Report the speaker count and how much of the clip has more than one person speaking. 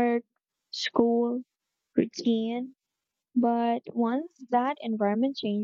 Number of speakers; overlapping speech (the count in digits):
1, no overlap